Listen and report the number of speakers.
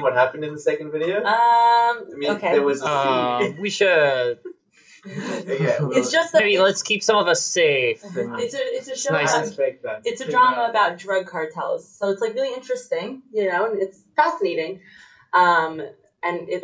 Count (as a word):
three